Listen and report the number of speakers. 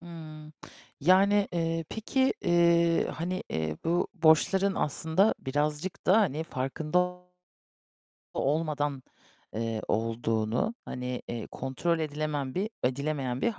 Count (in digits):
1